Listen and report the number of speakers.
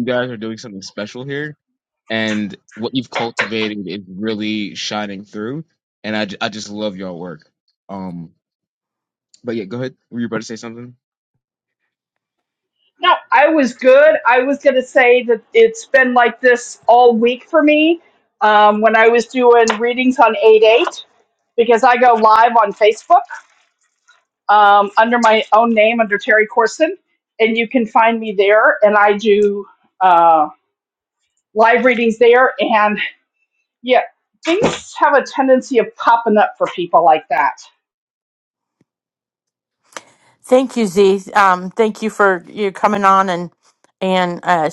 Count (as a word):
three